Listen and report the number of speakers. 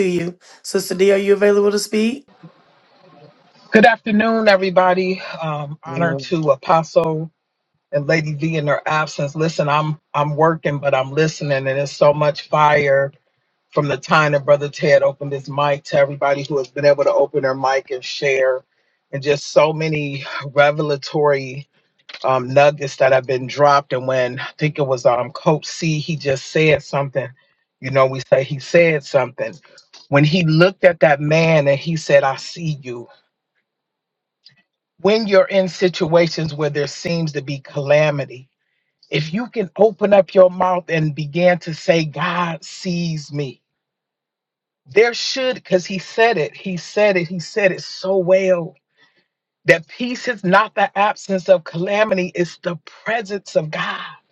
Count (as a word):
two